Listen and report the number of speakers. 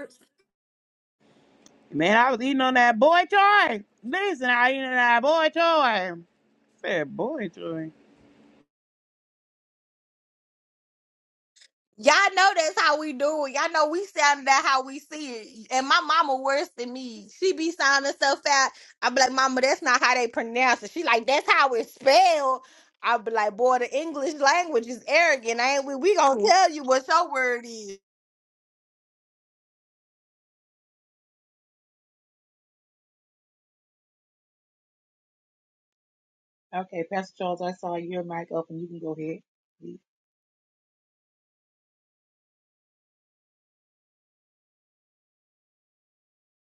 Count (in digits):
3